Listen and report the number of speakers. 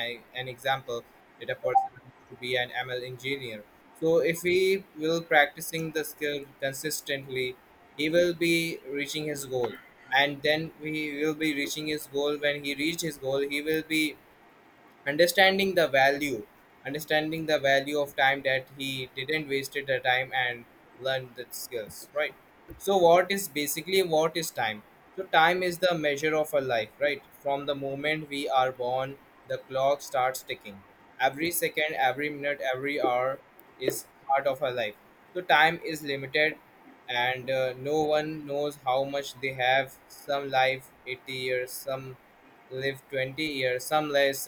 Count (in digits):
1